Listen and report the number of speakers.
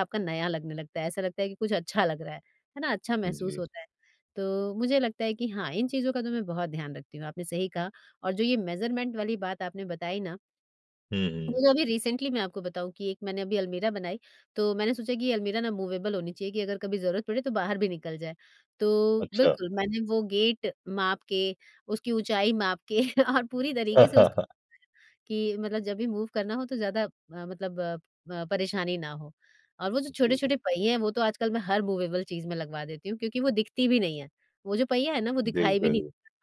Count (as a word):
two